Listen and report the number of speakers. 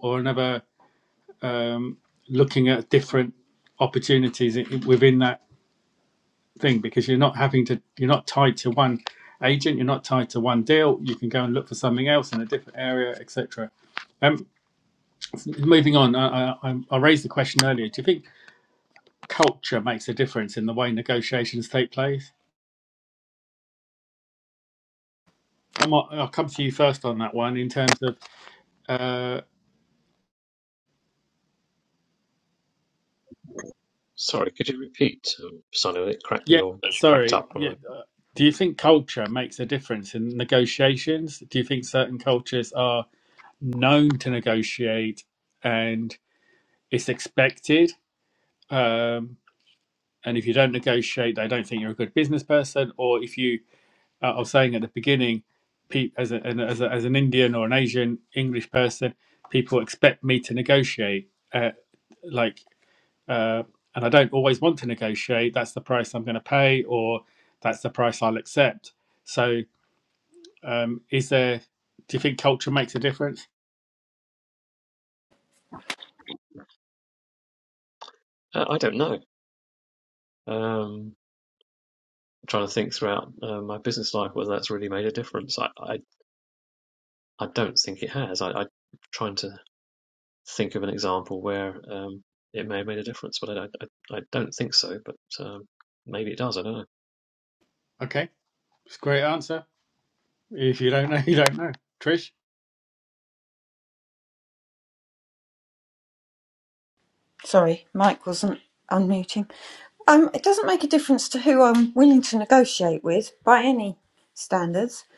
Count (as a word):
three